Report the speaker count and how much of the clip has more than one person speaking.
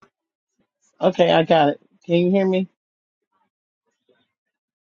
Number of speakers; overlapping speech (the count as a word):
one, no overlap